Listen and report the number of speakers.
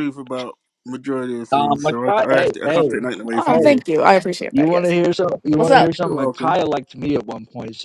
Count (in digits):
3